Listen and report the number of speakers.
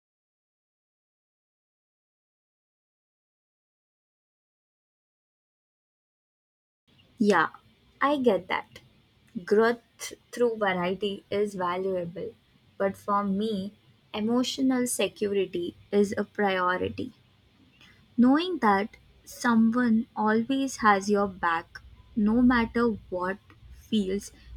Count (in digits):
1